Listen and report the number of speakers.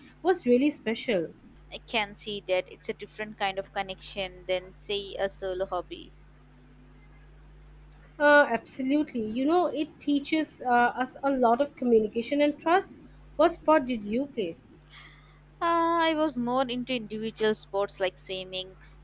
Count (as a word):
two